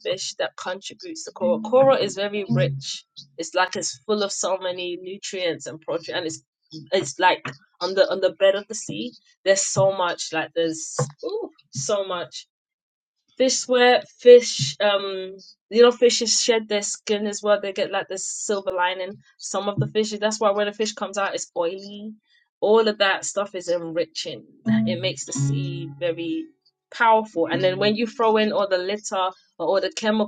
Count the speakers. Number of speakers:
1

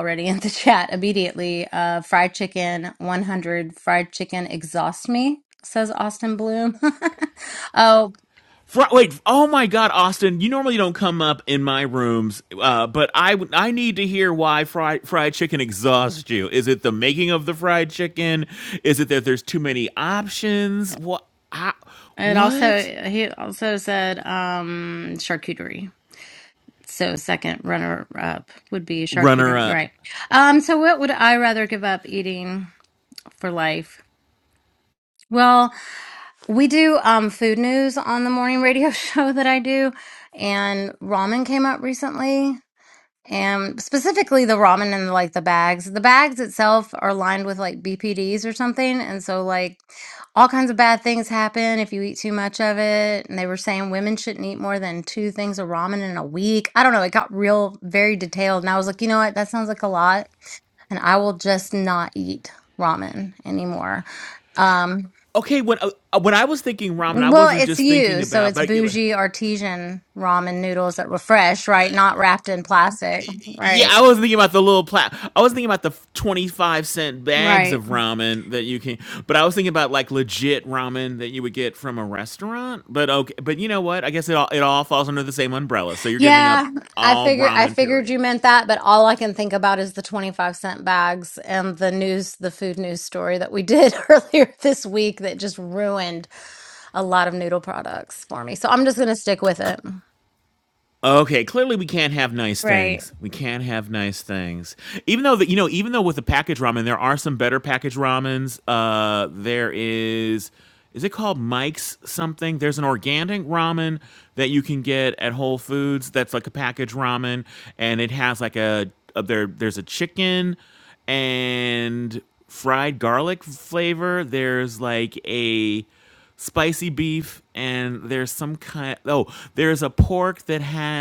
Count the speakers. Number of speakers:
2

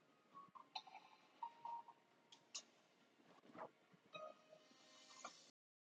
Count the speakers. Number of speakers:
0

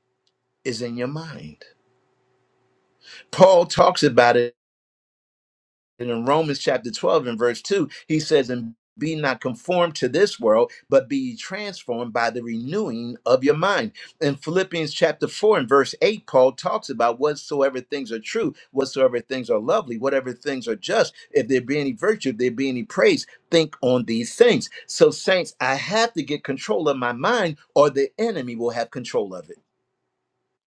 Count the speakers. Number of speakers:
1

